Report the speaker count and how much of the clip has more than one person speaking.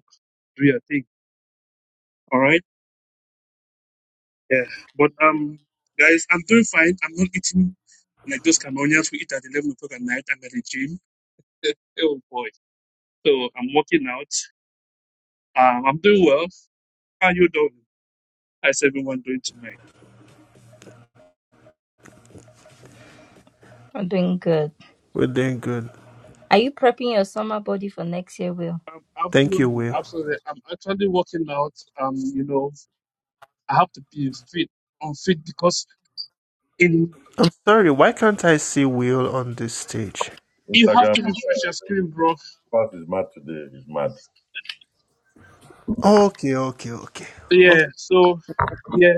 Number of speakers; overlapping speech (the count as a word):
four, about 3%